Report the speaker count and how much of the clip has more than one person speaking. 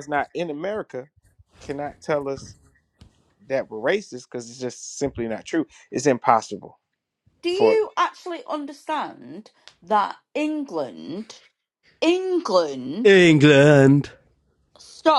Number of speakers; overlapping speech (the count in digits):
3, about 1%